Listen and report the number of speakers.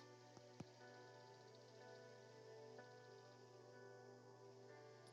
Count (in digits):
0